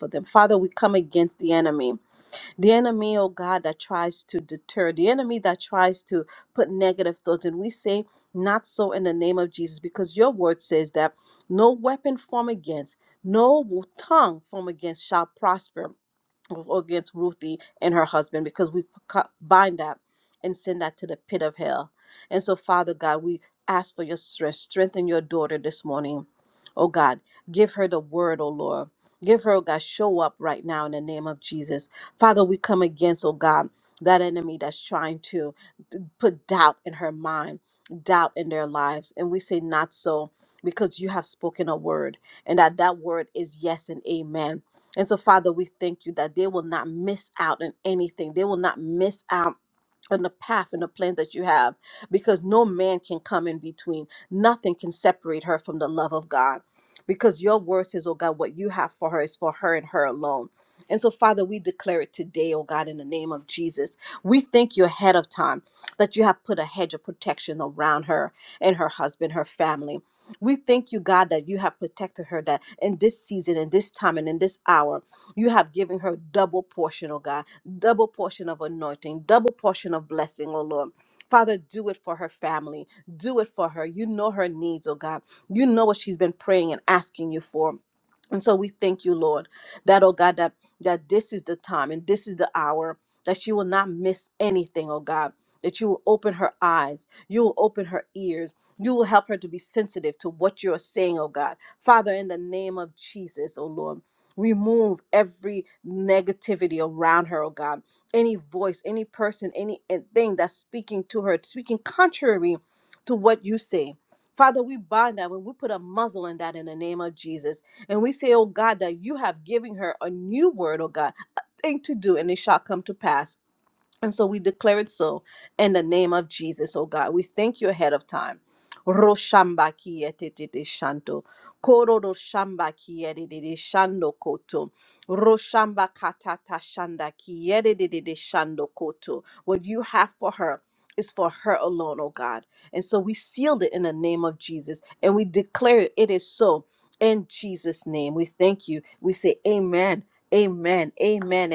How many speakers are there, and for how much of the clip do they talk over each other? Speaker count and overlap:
one, no overlap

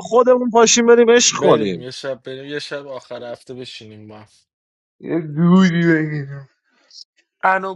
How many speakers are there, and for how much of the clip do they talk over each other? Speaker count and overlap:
three, about 6%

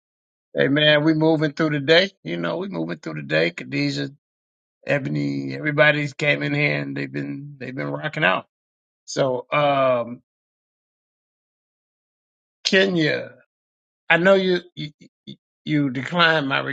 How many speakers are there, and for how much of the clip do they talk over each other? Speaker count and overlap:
one, no overlap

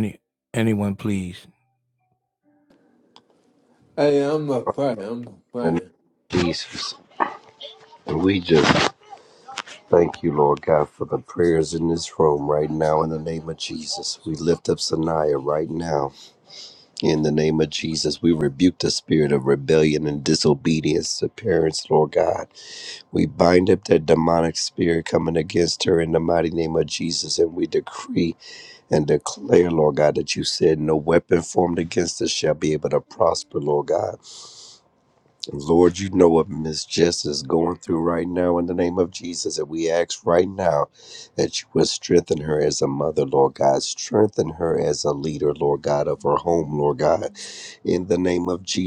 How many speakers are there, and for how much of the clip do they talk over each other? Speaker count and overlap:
three, under 1%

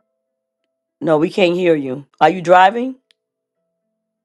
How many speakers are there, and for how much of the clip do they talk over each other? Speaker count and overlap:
one, no overlap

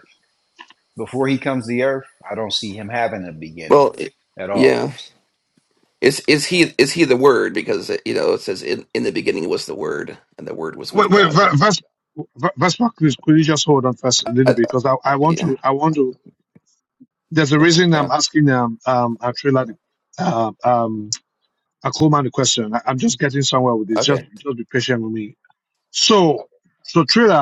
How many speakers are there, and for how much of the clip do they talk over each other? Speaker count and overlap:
three, about 7%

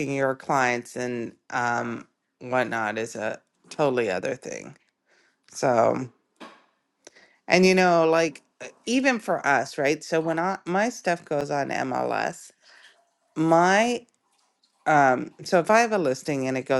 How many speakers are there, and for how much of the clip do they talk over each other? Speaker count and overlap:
one, no overlap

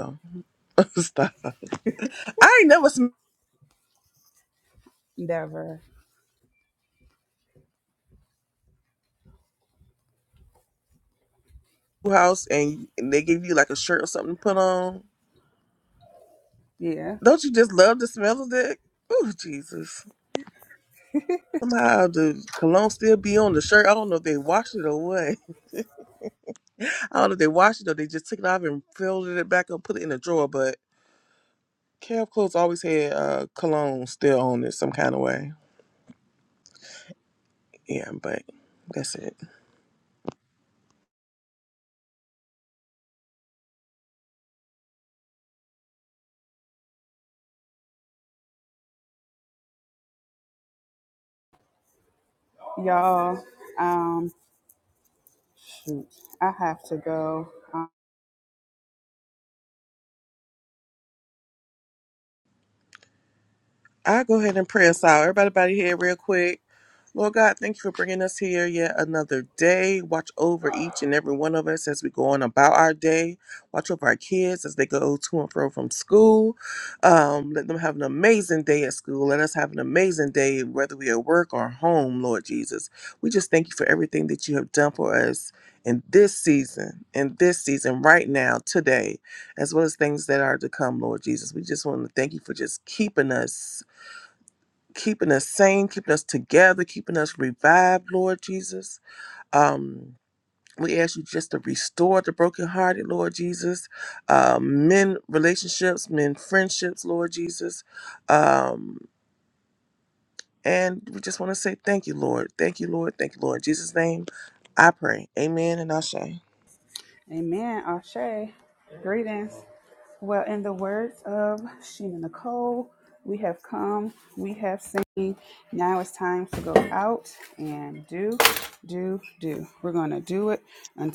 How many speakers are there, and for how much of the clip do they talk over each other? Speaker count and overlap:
two, no overlap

